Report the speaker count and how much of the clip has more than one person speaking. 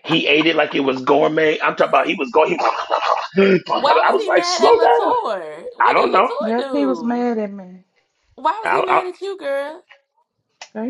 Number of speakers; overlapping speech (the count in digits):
3, about 26%